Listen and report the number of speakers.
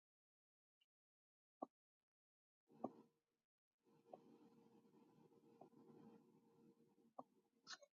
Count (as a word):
zero